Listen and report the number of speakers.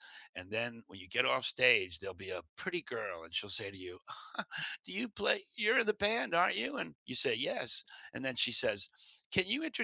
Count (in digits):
1